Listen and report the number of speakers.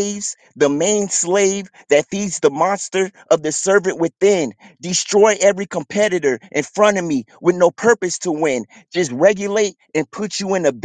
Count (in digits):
1